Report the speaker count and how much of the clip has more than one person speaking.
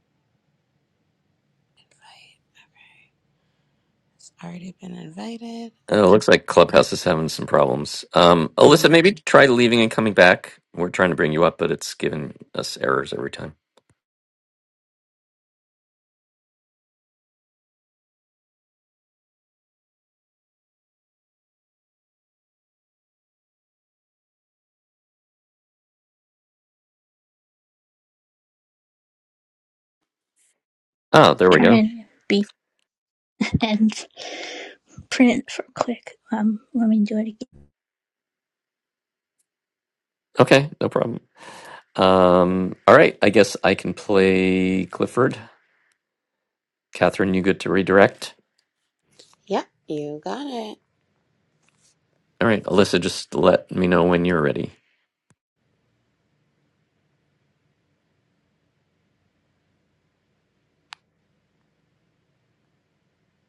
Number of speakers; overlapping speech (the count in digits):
3, about 1%